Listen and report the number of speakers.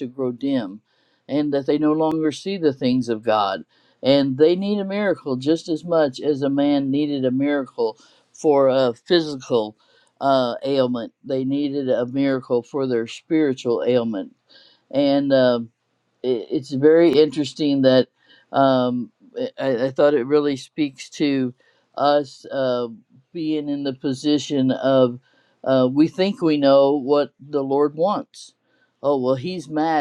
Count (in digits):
1